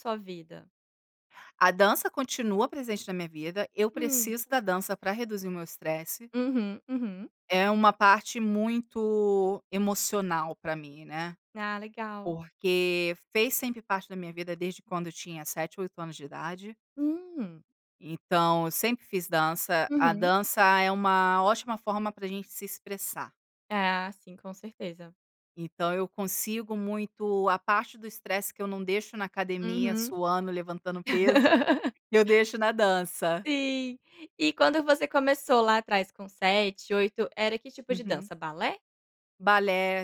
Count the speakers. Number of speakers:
2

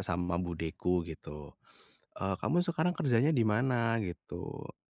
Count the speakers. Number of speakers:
1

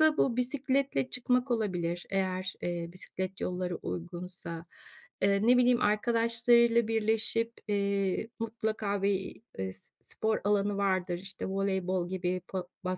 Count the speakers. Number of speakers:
1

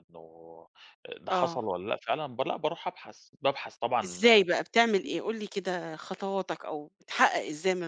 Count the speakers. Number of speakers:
2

